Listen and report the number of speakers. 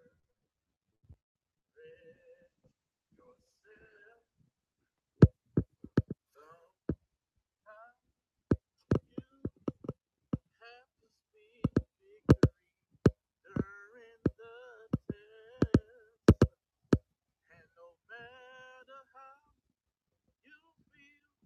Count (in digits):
0